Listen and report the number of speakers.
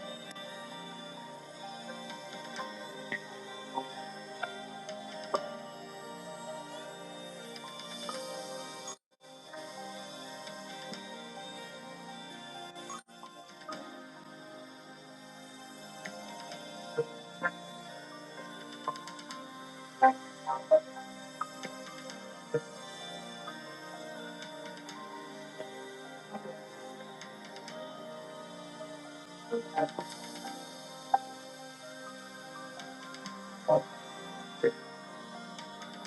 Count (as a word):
zero